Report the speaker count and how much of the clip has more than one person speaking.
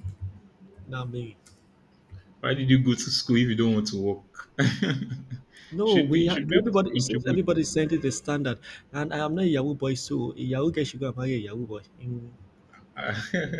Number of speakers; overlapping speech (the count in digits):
2, about 11%